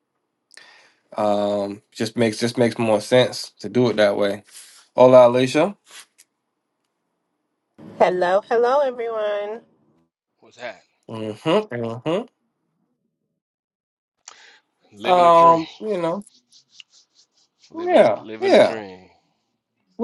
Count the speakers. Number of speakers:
three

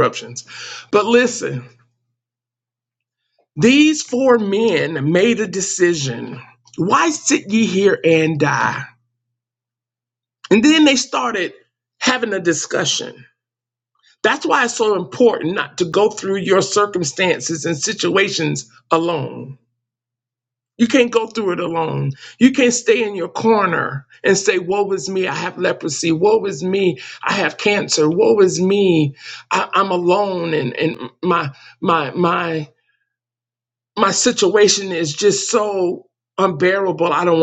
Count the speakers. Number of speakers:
one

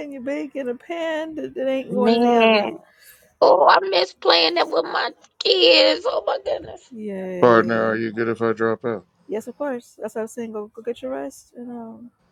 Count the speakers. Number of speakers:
three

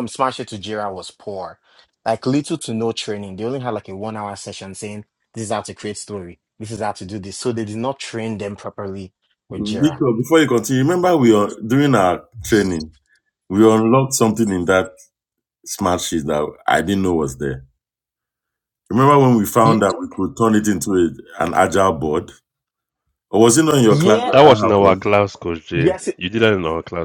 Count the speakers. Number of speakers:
three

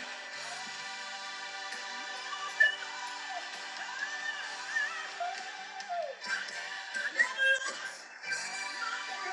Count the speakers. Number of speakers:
zero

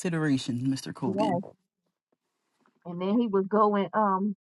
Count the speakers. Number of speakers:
two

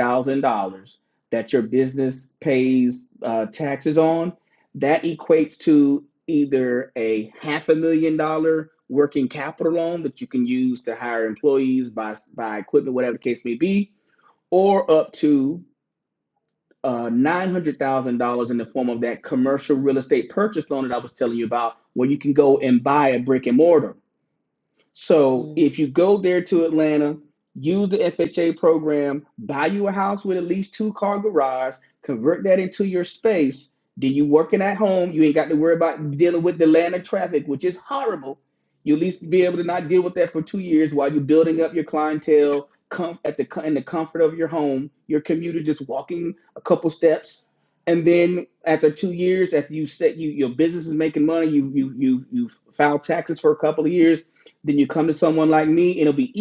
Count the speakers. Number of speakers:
one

